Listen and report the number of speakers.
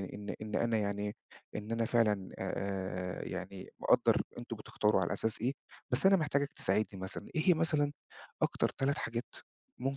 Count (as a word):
one